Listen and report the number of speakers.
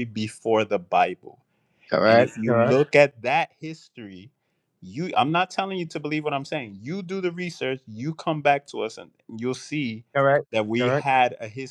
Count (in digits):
2